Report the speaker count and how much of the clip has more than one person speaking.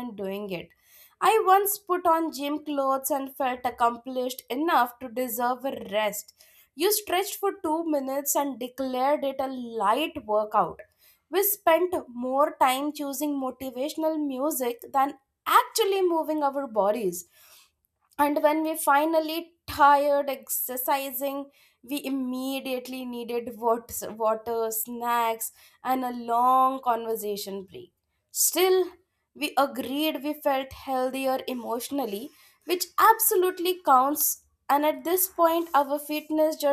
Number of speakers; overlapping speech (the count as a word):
one, no overlap